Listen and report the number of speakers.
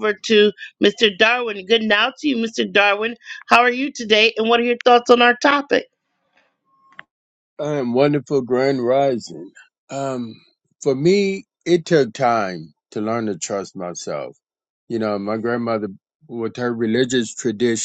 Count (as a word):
two